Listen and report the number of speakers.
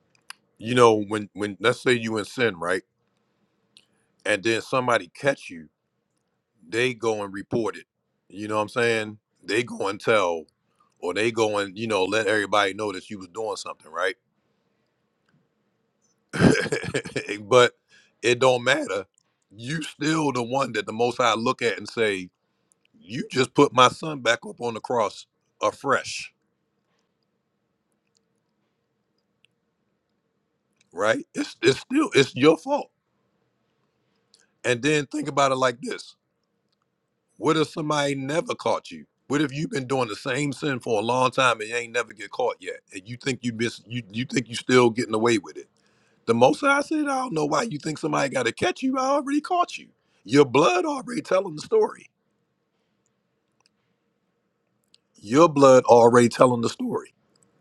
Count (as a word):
one